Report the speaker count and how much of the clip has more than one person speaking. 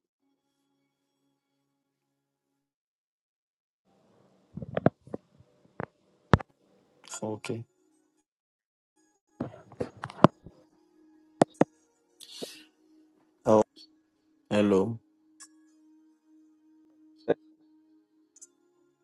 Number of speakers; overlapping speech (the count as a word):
one, no overlap